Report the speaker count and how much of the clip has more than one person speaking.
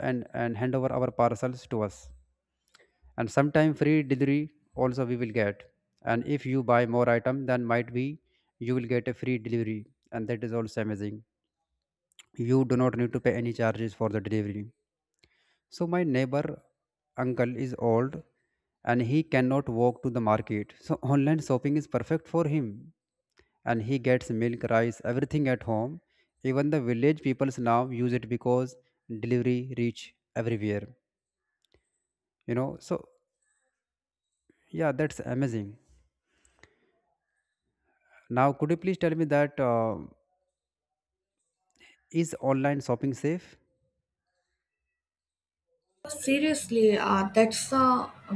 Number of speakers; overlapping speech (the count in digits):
2, no overlap